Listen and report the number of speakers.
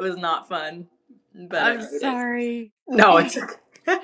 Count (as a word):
two